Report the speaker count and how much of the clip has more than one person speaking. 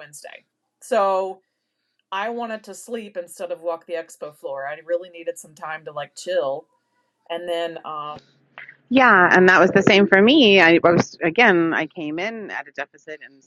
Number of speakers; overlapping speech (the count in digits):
2, no overlap